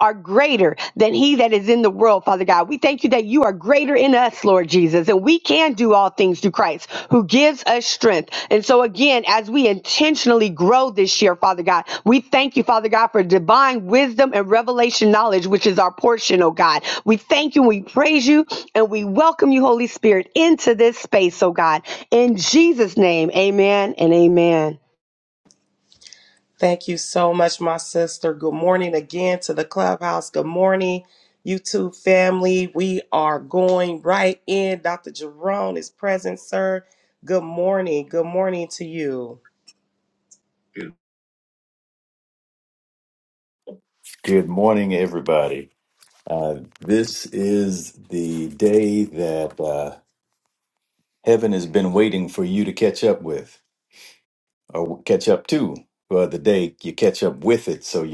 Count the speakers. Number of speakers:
three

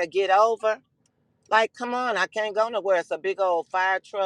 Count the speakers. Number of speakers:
one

